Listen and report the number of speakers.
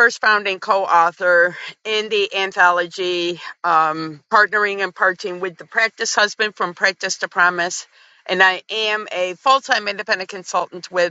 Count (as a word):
one